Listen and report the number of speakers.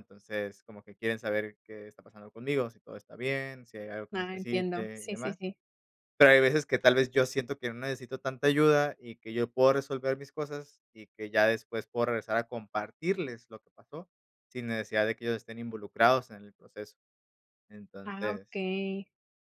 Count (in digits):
2